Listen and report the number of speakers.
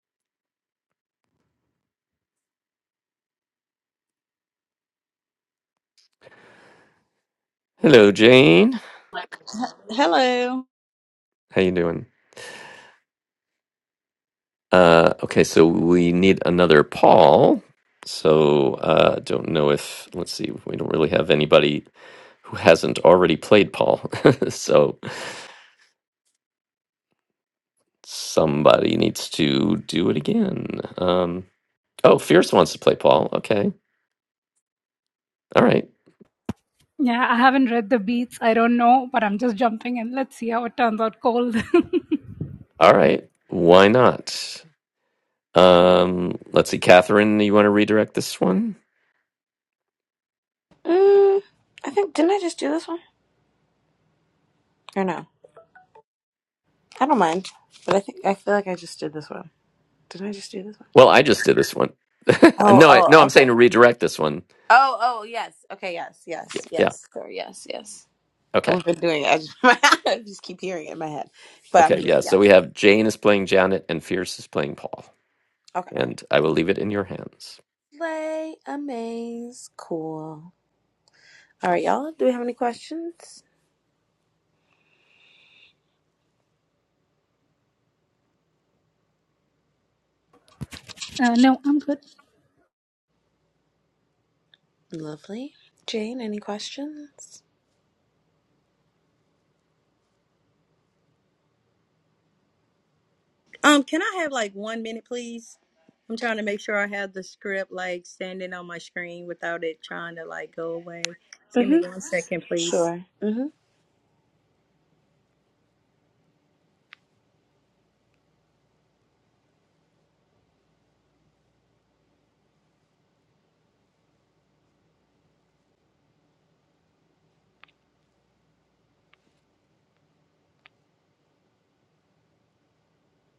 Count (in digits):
4